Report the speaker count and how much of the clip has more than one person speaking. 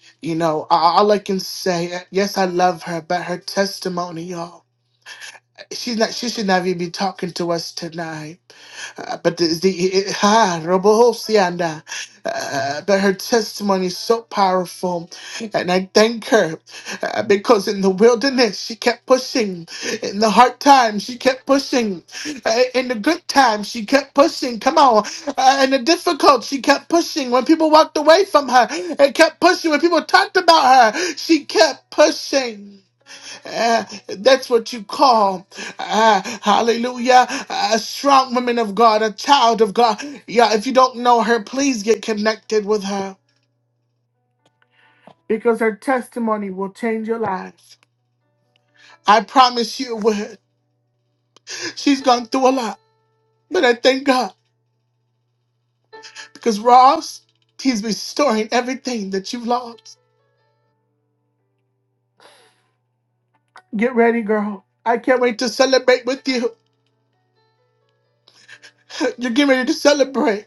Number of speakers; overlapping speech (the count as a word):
one, no overlap